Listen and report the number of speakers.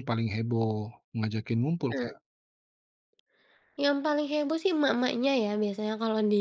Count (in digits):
2